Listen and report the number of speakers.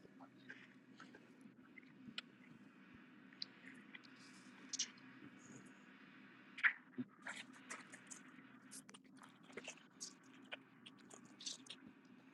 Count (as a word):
zero